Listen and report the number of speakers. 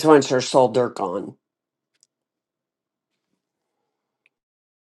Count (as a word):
one